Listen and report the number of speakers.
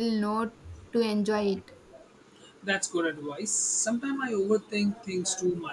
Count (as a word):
two